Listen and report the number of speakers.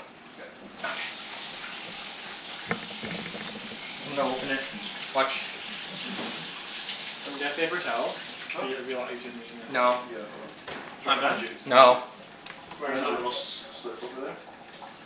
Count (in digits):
3